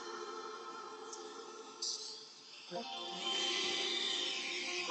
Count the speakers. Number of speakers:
0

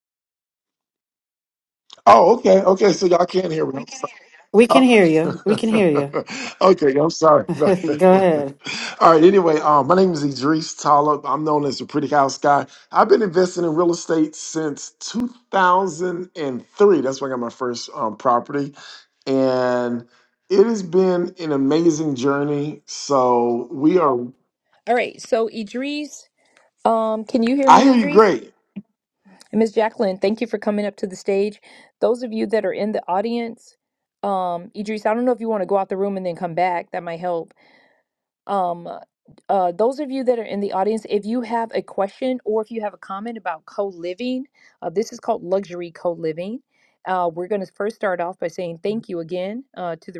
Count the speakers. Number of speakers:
3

